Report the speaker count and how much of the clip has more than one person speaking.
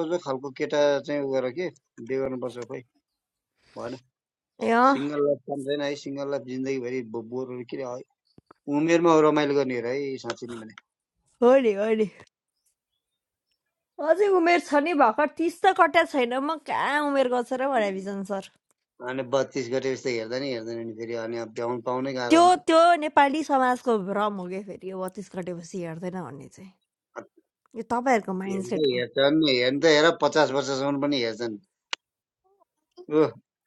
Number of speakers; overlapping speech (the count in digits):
2, about 2%